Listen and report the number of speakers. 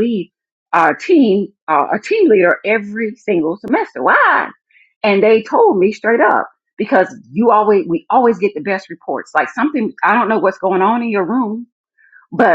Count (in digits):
1